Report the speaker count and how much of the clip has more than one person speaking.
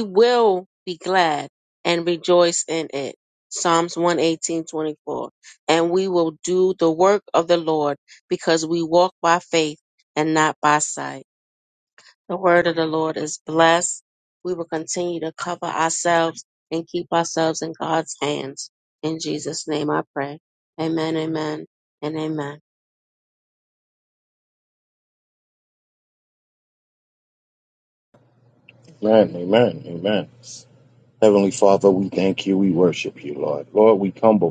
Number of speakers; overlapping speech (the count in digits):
2, no overlap